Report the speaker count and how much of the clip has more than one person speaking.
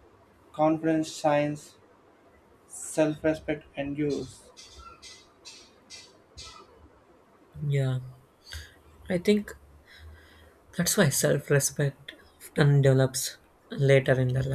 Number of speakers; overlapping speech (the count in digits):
2, no overlap